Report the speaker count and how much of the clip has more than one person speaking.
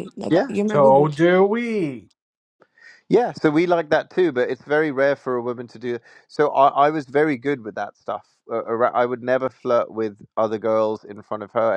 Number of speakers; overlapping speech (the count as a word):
three, about 5%